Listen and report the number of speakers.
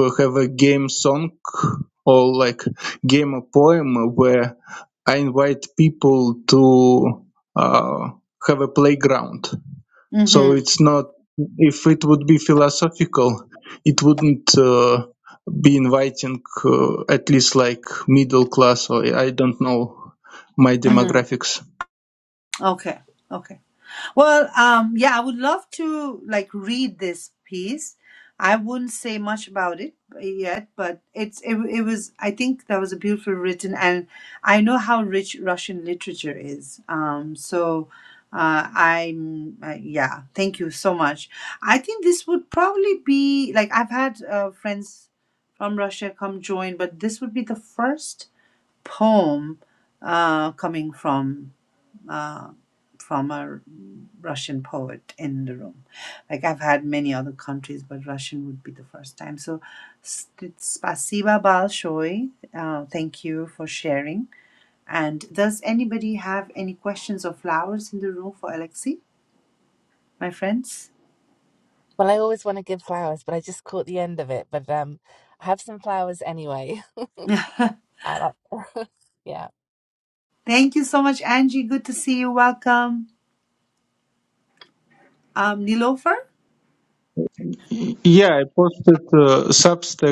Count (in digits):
3